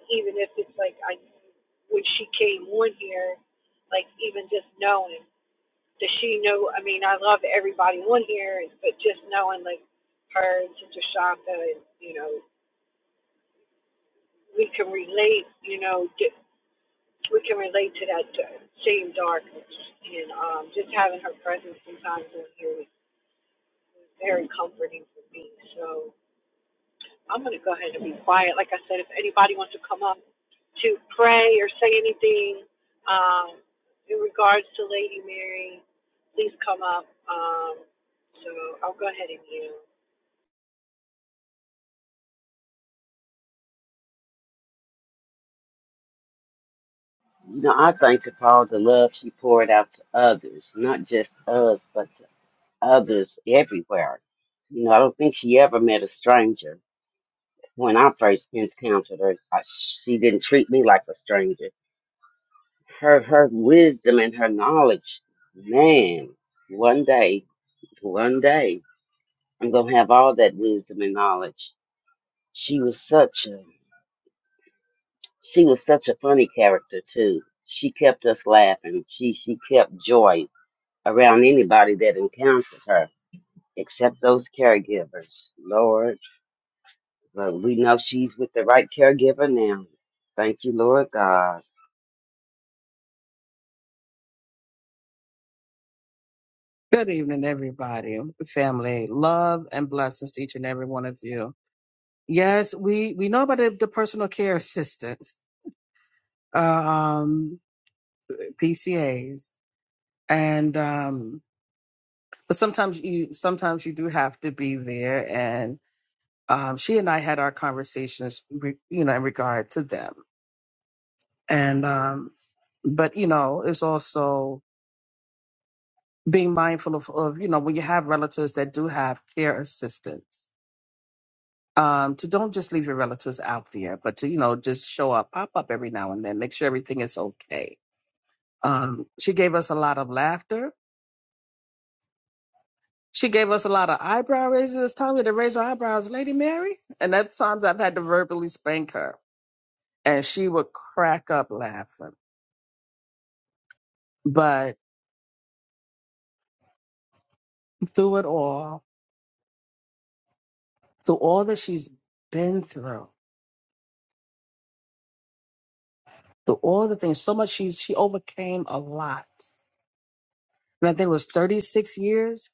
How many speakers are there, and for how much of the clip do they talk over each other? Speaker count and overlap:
3, no overlap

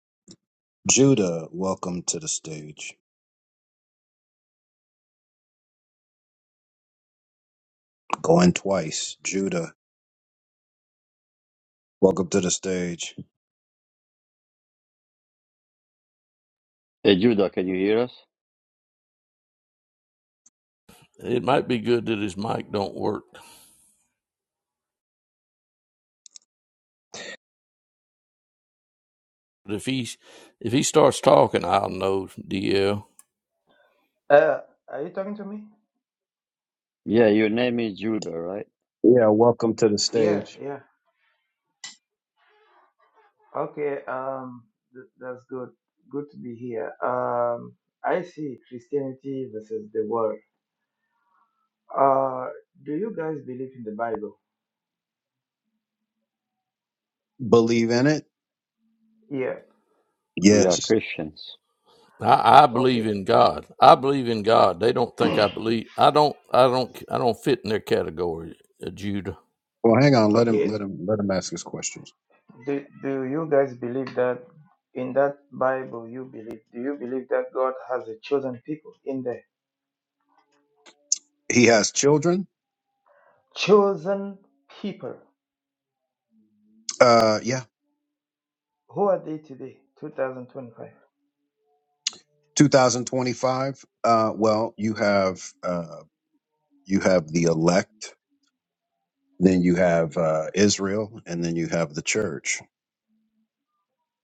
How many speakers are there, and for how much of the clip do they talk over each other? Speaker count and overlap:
4, about 2%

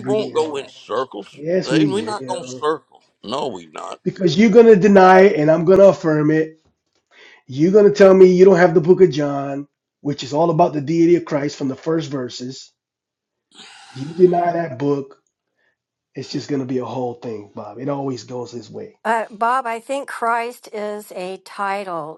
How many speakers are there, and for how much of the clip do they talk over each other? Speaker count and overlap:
3, about 7%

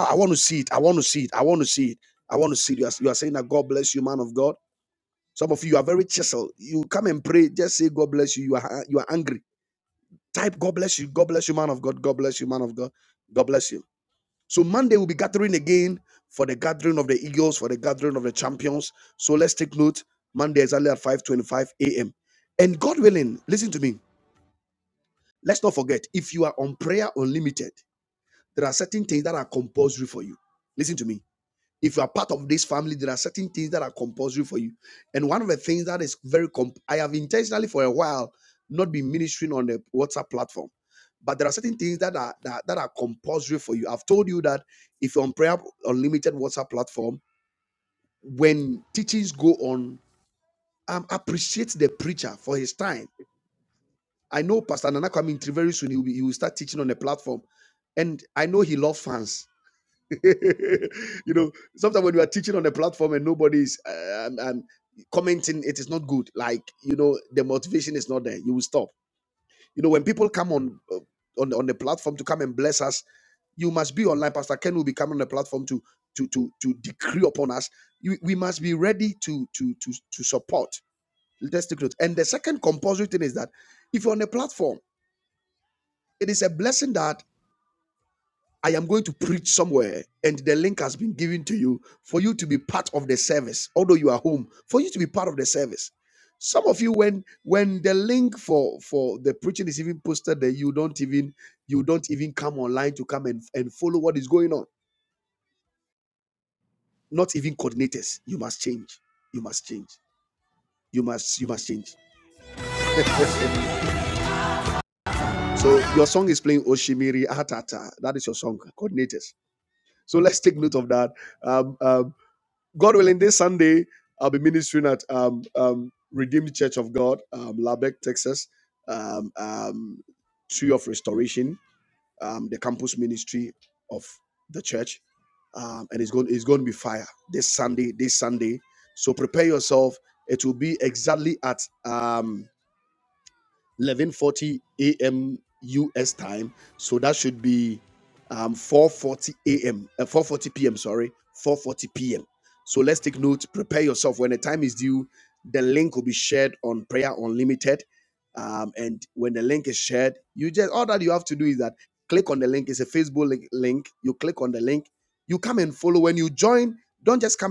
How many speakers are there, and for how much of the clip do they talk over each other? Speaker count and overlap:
1, no overlap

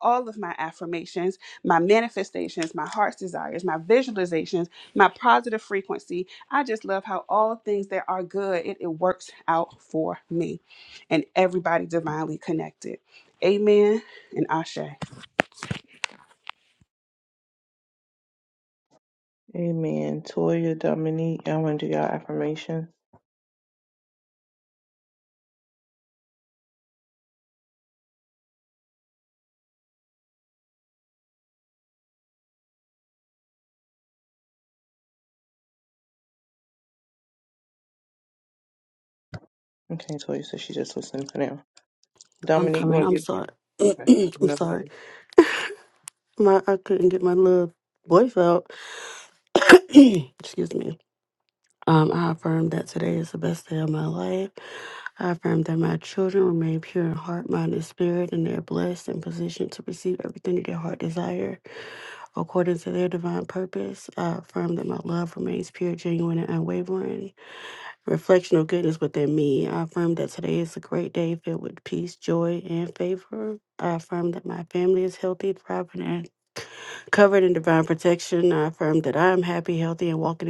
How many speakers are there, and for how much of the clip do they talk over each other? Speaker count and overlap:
3, about 1%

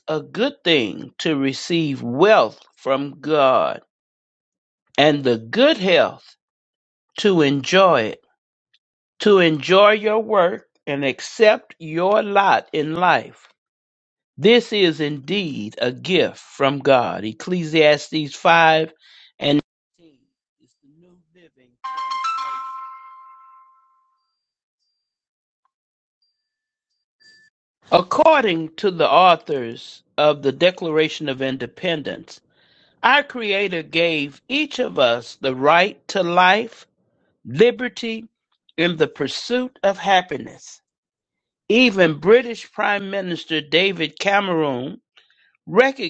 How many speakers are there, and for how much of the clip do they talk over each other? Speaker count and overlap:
1, no overlap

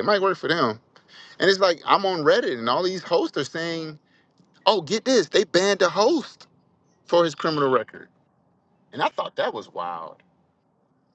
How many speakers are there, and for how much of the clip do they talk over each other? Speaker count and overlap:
1, no overlap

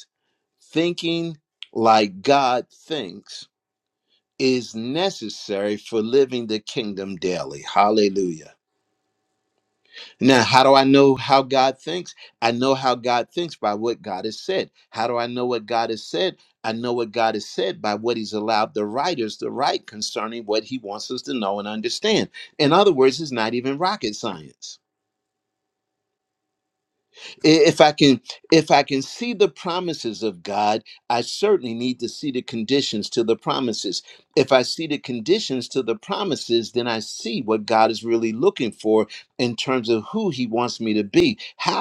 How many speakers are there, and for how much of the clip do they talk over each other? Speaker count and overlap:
1, no overlap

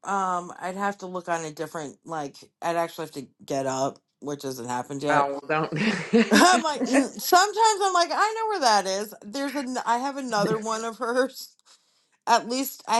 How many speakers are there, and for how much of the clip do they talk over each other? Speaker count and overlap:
2, about 4%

